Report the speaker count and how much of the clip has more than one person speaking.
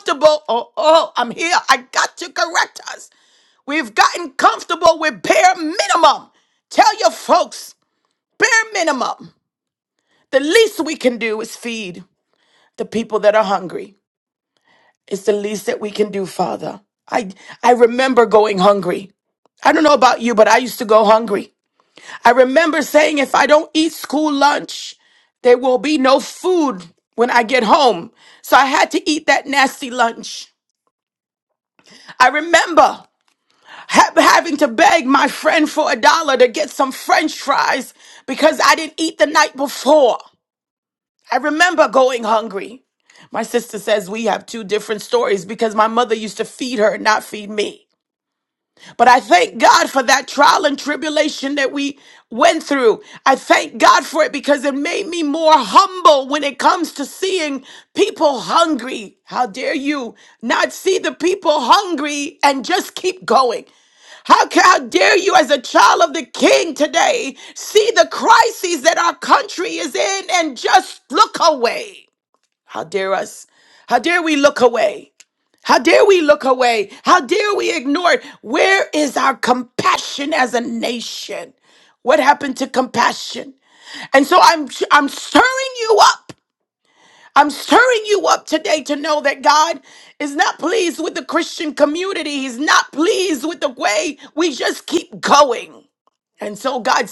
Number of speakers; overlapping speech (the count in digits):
1, no overlap